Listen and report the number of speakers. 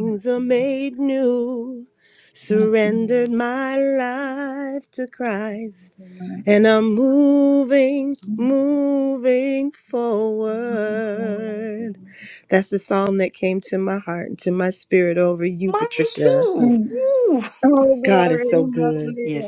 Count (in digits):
3